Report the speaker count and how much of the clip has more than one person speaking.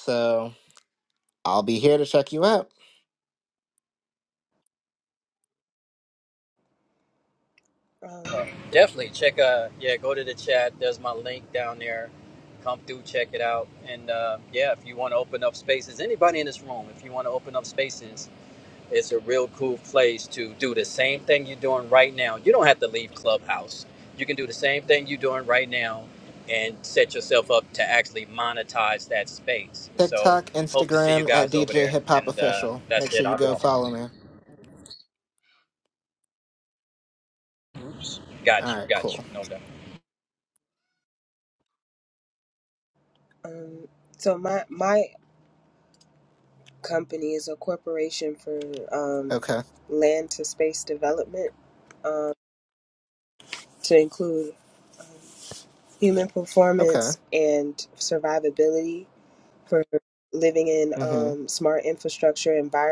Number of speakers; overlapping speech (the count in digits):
3, about 8%